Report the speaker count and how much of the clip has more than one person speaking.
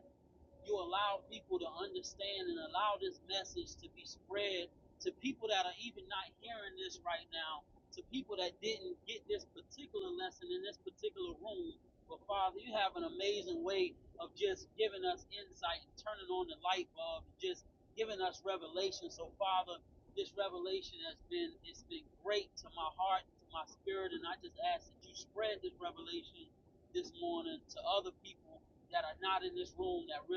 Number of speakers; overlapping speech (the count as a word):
one, no overlap